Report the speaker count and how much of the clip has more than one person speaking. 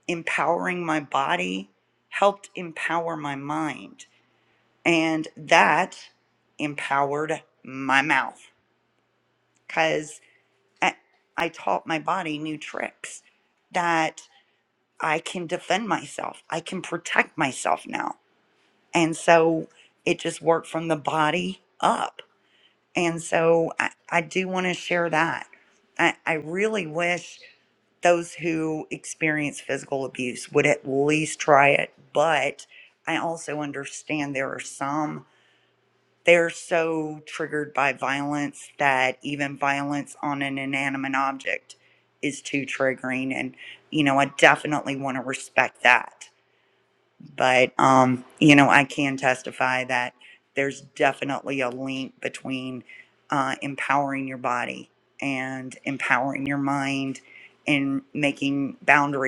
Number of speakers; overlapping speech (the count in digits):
1, no overlap